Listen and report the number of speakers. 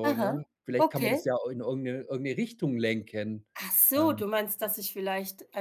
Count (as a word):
two